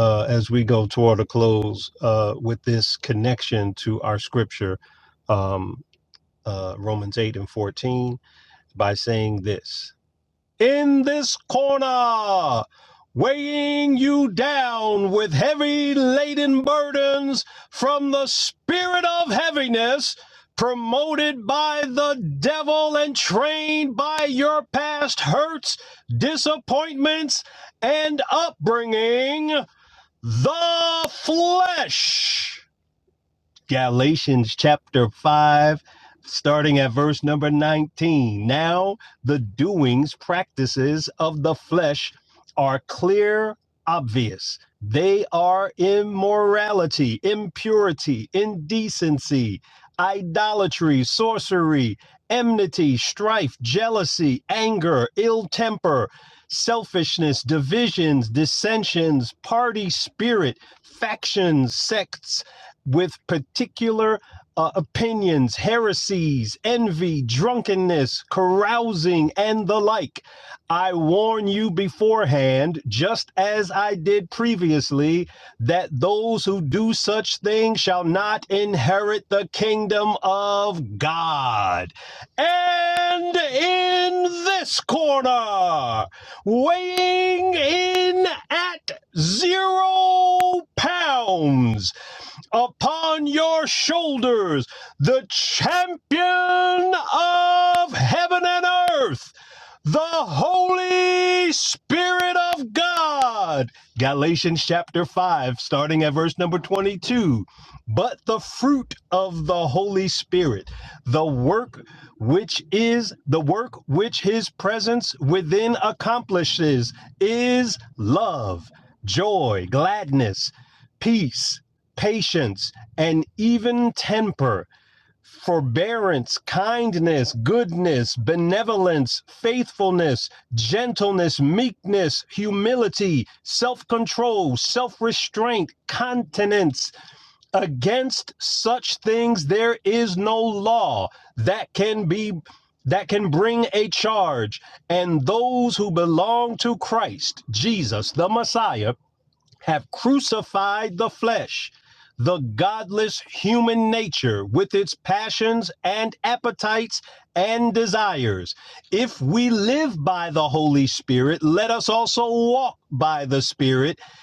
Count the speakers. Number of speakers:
one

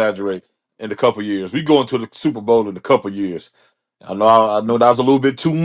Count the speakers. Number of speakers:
one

